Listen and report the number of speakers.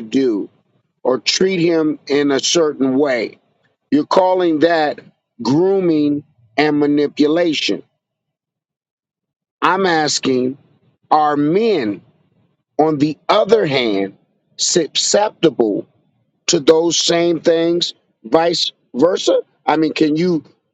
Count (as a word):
one